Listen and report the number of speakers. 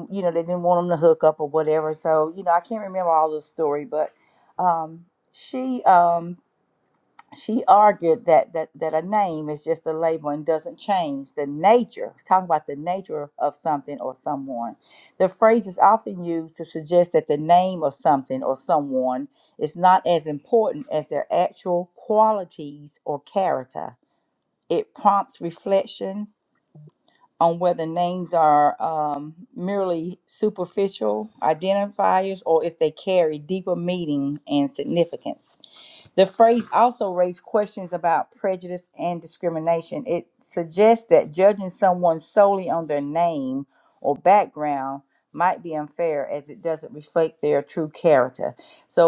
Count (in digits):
1